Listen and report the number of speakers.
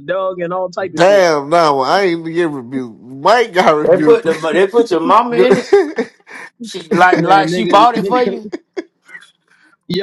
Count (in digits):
3